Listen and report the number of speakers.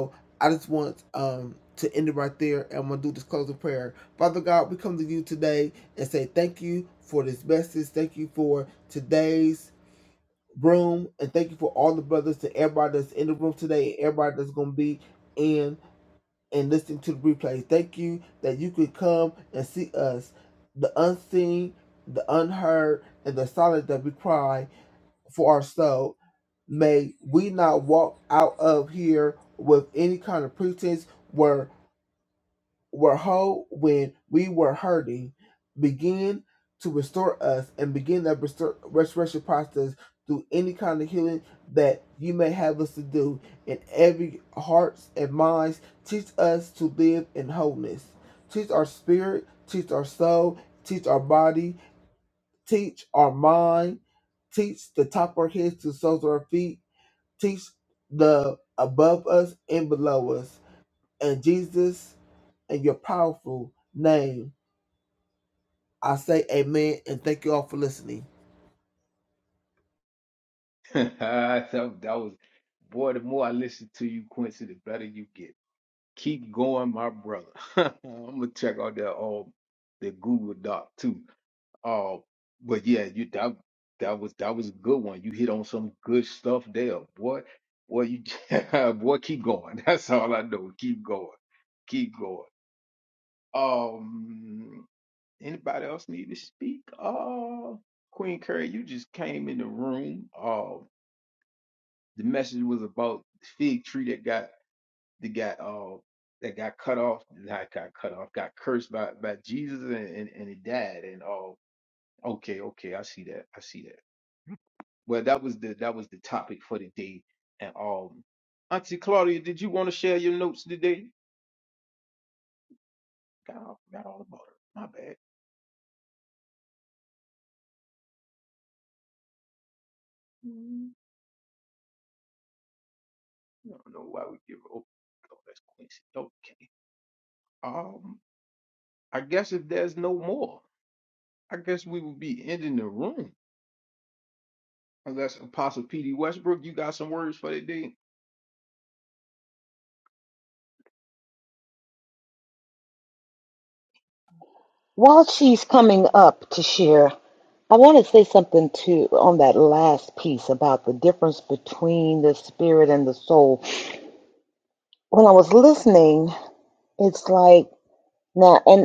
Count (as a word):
three